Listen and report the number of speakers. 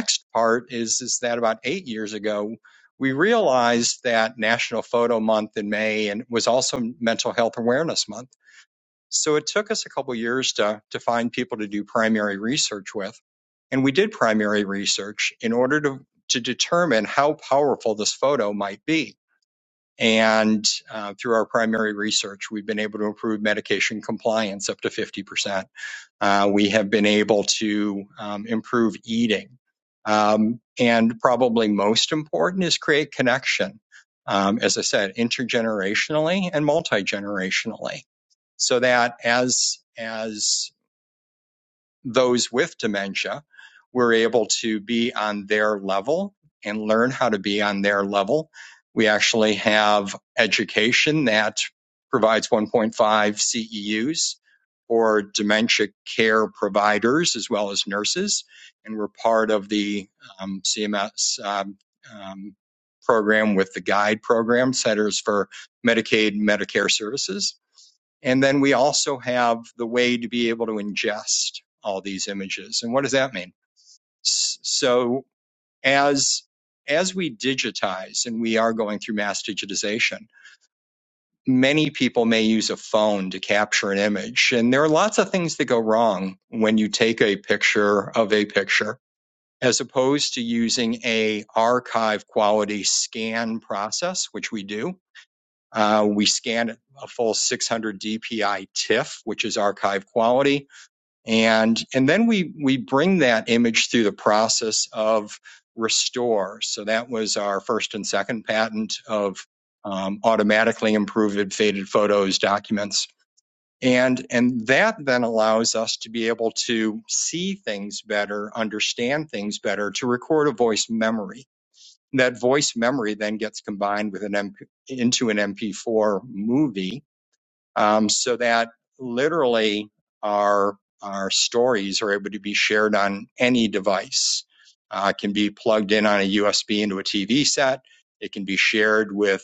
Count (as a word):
one